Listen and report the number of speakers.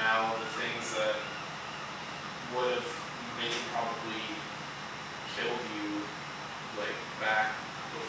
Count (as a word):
one